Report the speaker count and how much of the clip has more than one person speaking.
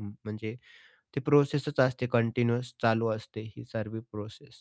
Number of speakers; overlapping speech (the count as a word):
one, no overlap